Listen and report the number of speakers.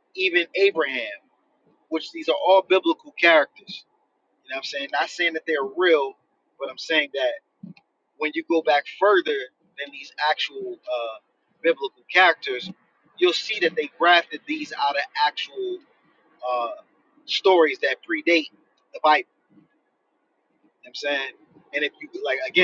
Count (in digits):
1